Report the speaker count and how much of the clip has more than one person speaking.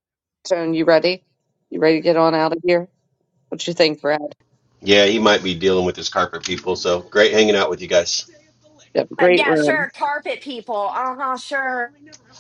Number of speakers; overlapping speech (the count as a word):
three, about 5%